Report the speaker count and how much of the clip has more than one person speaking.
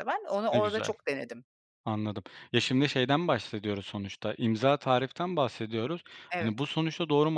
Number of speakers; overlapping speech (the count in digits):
2, about 7%